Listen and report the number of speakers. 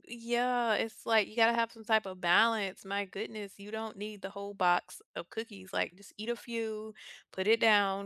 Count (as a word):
one